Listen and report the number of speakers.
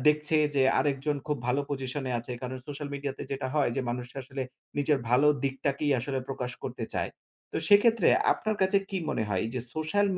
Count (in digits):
1